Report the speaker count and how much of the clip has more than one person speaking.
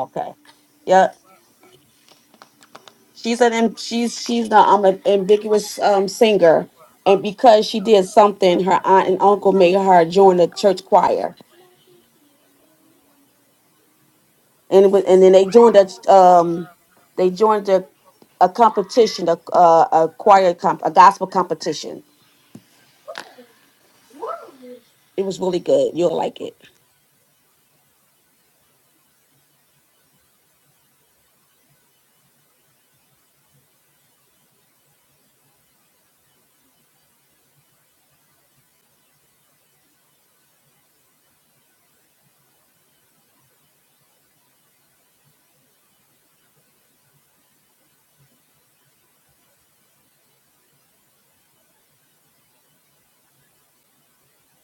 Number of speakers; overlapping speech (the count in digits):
1, no overlap